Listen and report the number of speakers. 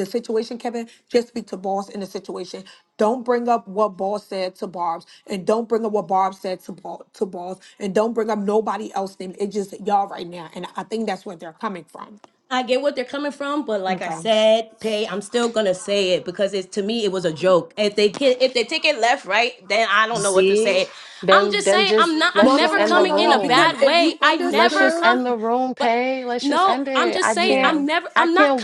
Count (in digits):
3